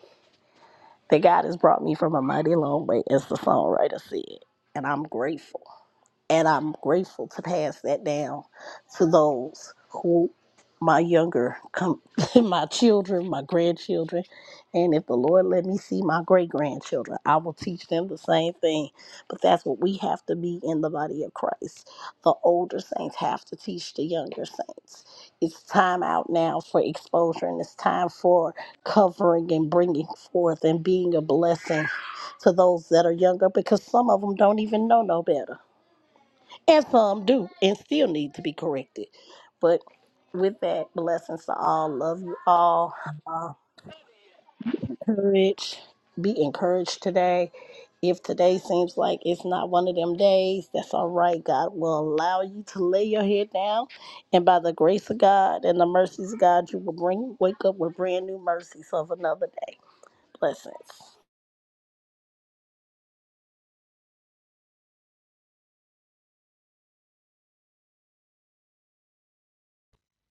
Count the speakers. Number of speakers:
one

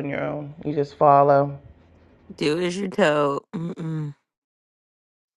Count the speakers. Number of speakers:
two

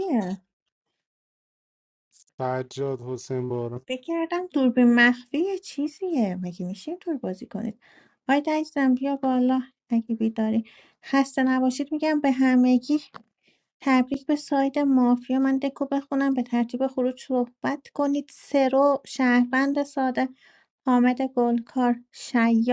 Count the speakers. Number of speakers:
two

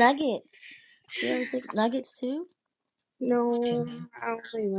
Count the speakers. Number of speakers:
two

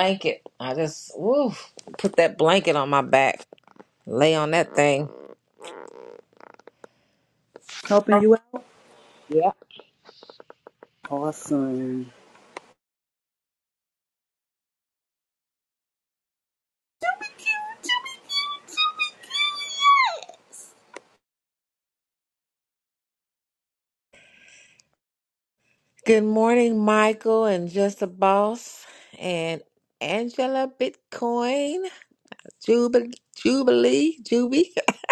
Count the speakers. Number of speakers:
two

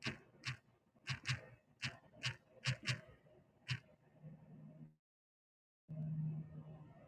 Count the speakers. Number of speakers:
zero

